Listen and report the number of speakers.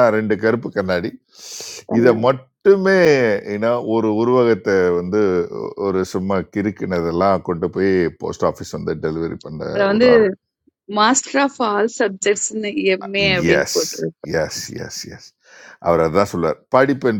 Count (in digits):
2